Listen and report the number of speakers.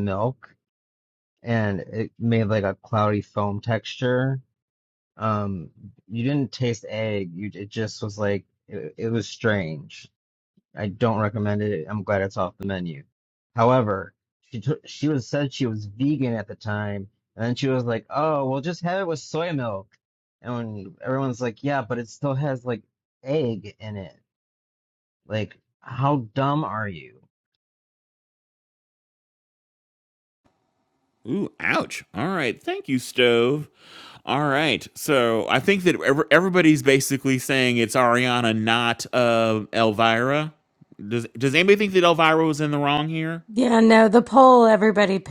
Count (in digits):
3